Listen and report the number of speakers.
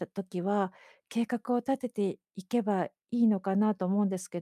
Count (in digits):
1